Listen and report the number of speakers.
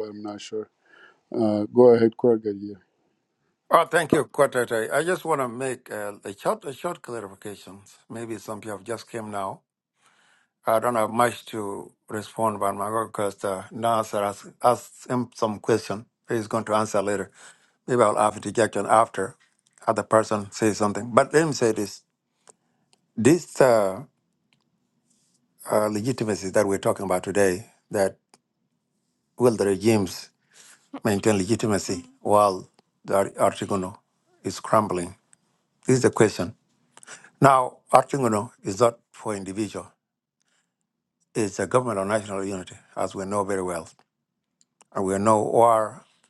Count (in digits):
2